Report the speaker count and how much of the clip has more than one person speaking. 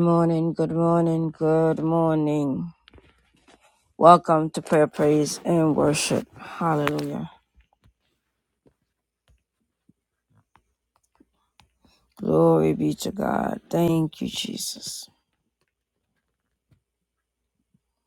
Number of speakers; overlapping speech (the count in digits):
1, no overlap